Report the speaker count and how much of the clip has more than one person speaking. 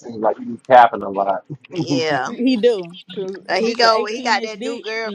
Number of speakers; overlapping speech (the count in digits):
3, about 33%